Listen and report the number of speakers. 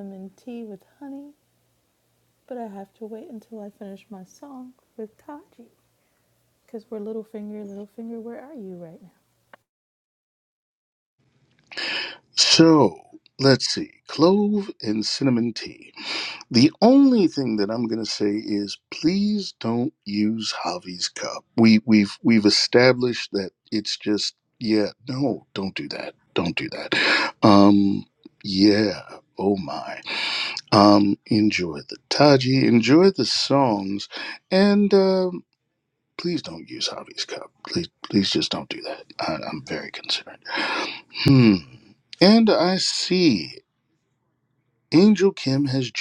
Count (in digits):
2